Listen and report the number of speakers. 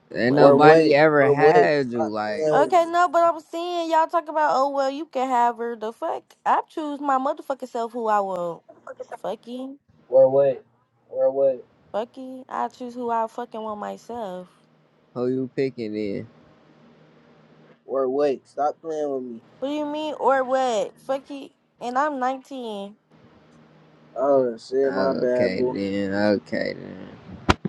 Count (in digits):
3